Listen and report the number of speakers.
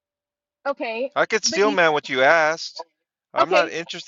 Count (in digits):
2